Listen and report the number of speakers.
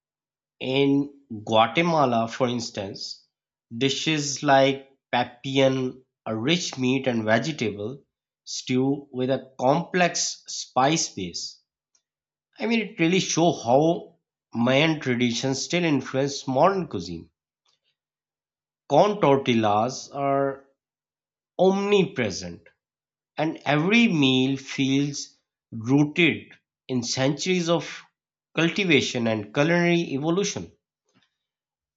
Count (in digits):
1